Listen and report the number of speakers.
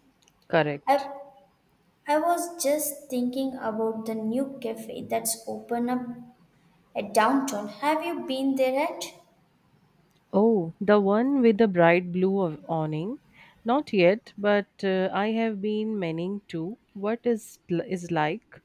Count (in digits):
2